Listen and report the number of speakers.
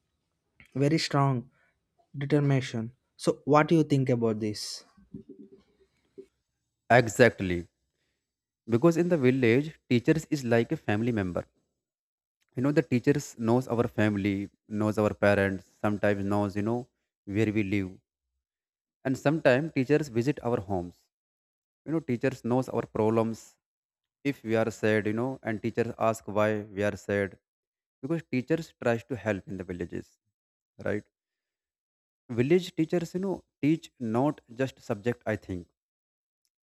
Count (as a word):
two